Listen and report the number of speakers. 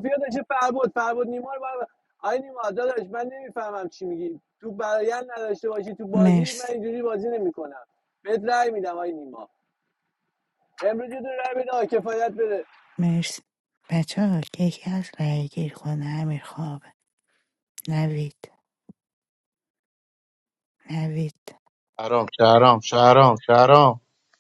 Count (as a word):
three